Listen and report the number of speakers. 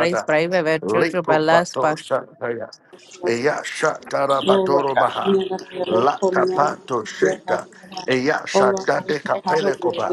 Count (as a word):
three